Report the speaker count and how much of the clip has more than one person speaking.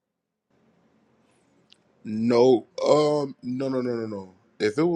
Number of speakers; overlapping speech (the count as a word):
one, no overlap